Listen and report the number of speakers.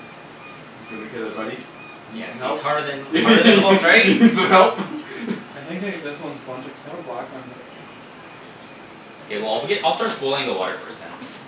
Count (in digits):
3